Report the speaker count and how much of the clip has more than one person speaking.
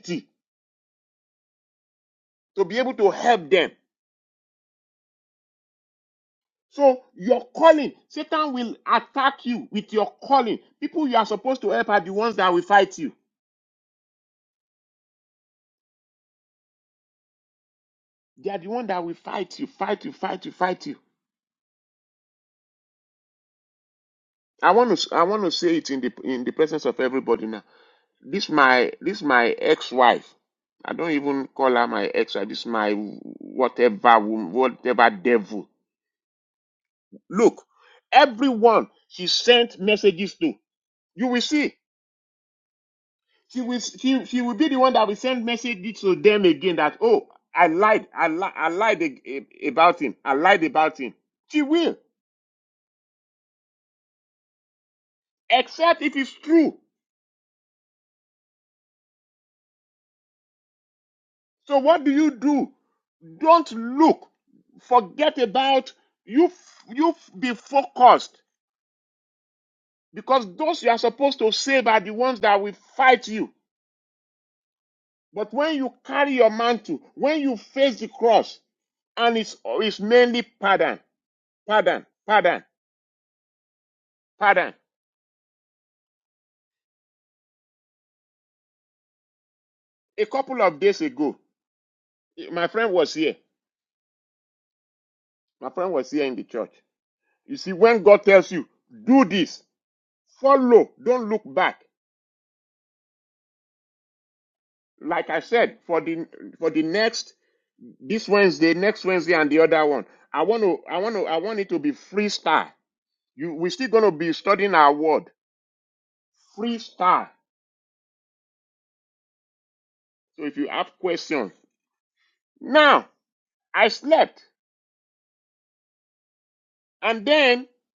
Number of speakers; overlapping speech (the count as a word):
one, no overlap